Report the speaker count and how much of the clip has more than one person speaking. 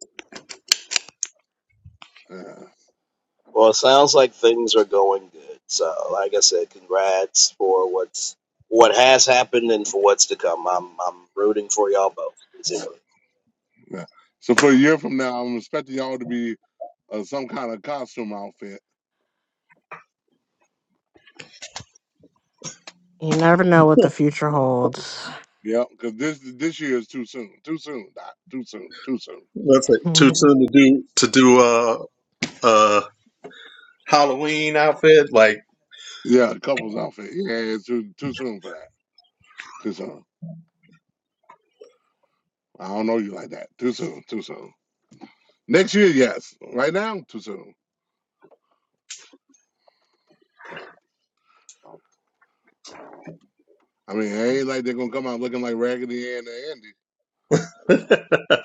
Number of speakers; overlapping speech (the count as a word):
four, about 1%